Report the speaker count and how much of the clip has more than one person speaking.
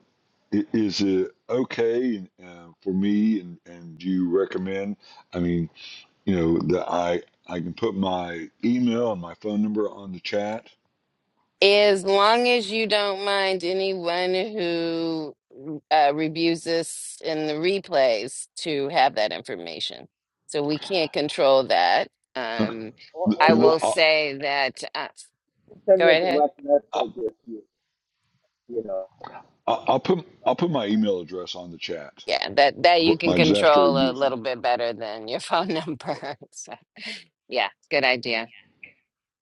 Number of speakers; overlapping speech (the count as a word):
three, about 8%